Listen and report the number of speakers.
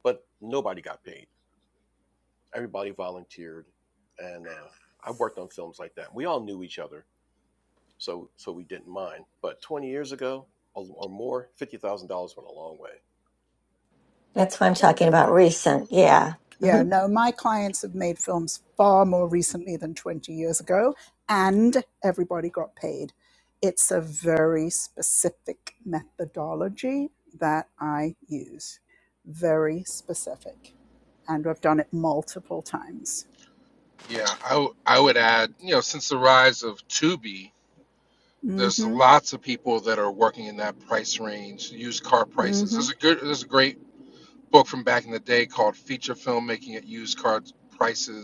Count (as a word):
four